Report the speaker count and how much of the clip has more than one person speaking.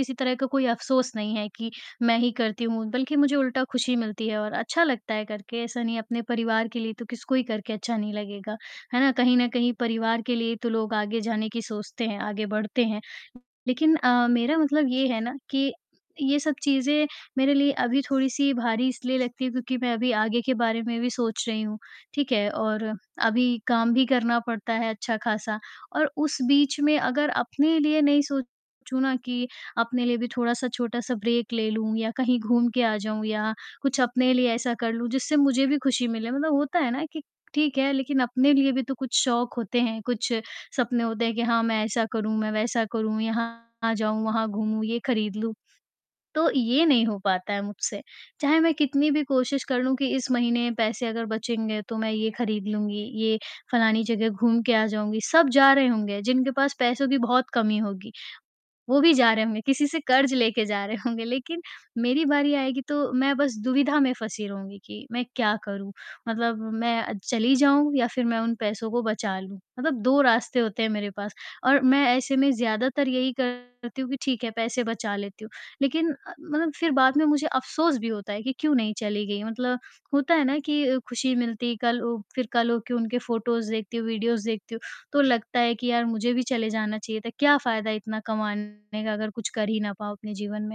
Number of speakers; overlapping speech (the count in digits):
1, no overlap